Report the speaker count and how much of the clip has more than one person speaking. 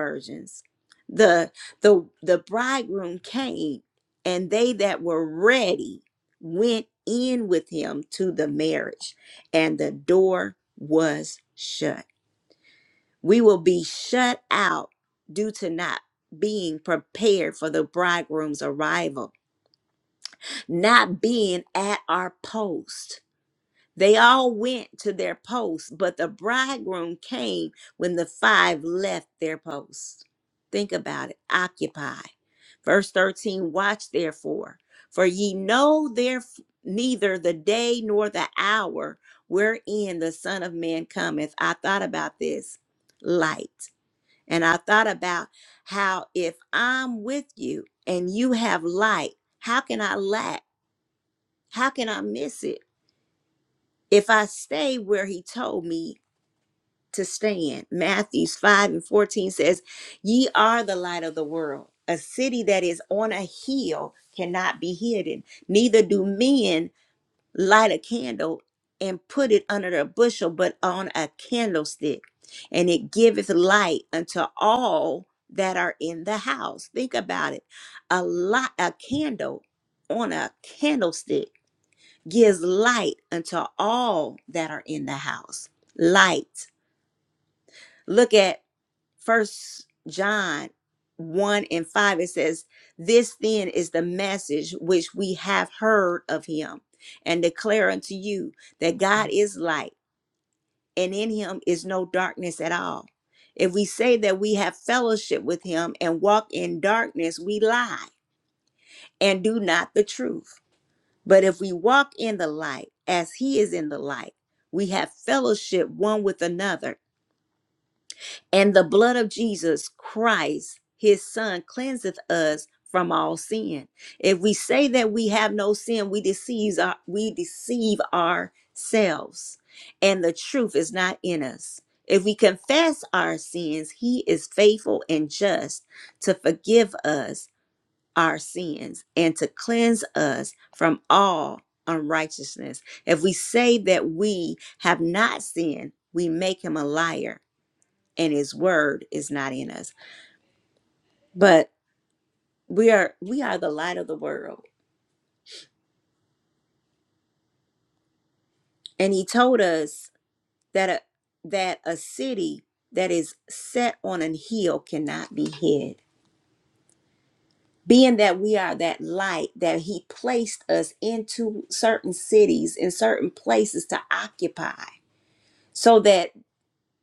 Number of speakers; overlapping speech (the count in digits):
1, no overlap